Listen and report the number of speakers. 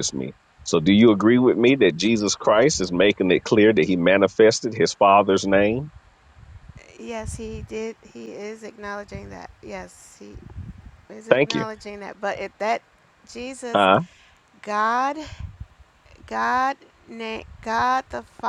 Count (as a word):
two